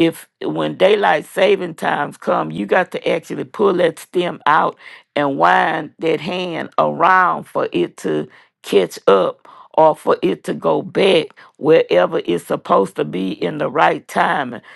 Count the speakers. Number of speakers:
one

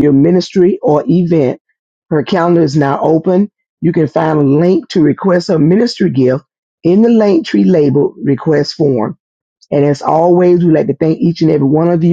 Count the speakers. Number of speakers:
one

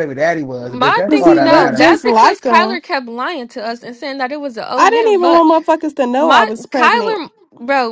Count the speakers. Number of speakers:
three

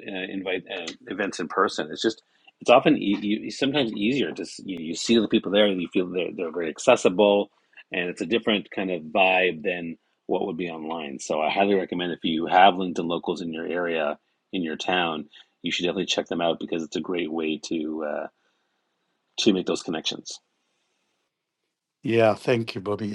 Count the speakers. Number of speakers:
two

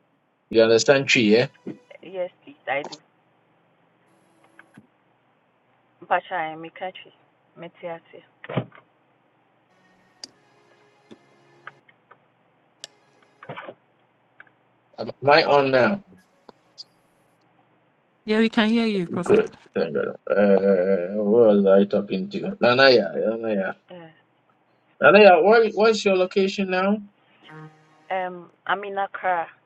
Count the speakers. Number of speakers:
three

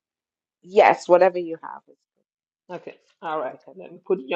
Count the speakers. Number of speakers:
two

